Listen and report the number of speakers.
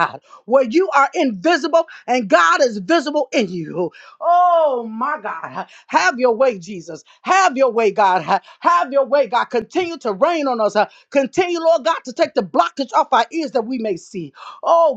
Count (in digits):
1